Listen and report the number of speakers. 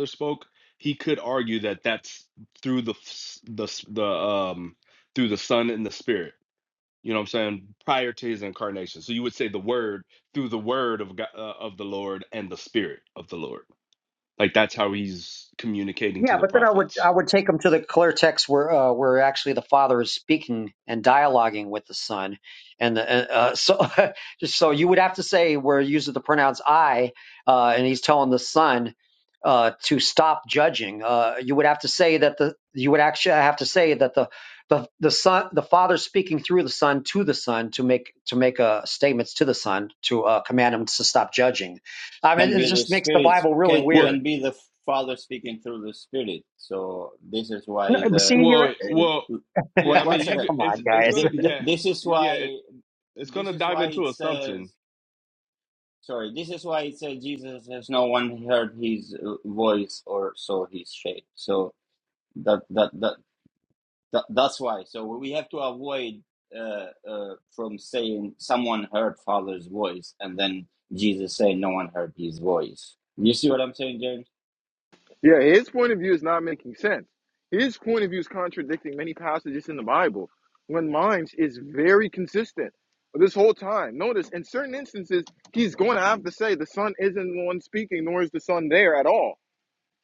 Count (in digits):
4